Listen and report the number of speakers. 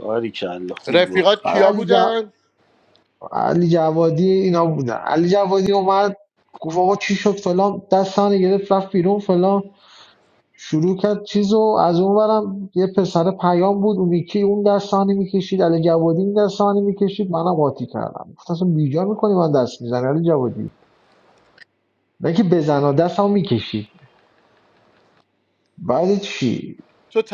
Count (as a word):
three